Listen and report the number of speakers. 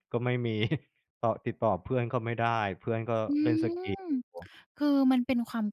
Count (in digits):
2